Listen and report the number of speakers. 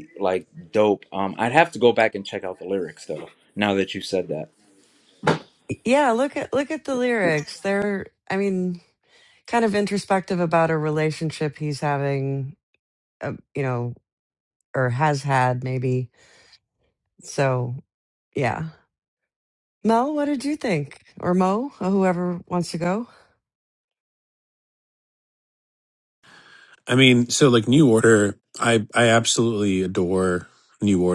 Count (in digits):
3